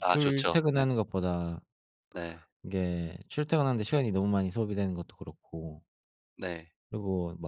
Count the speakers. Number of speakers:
2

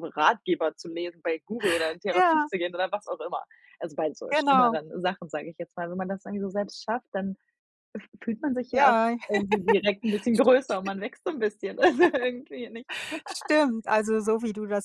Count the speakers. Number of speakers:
2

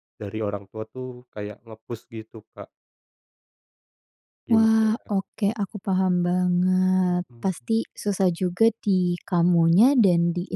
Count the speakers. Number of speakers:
2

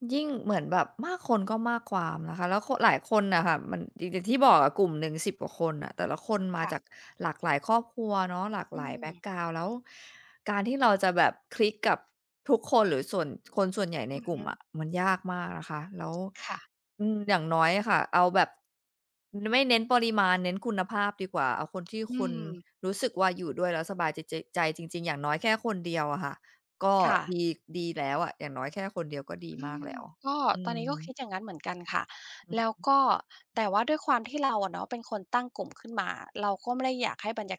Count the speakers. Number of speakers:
2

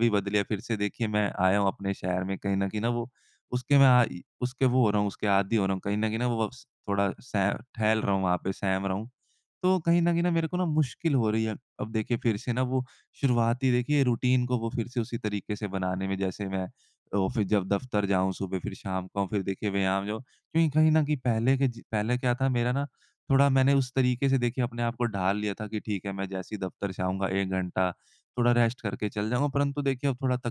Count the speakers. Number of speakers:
1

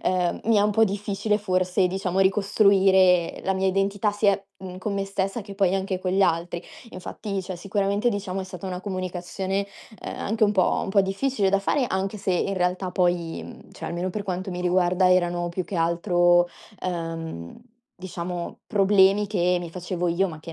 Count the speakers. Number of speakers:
1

